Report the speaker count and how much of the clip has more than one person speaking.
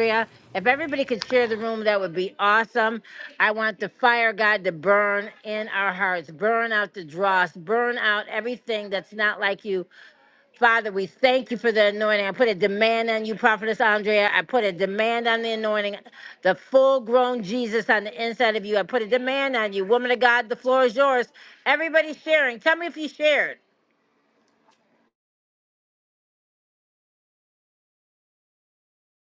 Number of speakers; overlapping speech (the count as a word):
one, no overlap